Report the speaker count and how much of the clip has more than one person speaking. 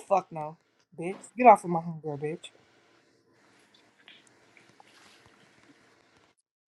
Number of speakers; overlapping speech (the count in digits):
1, no overlap